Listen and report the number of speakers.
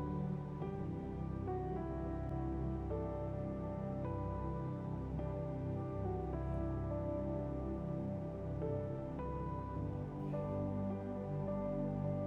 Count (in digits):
0